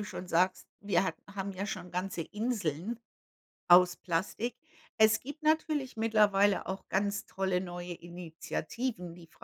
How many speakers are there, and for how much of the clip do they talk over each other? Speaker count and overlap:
1, no overlap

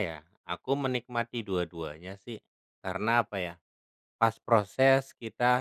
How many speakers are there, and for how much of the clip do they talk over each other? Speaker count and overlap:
1, no overlap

